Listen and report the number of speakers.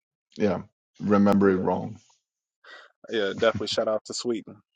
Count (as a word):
two